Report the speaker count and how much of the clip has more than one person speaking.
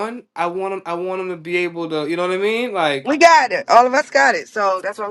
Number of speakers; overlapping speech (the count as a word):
two, no overlap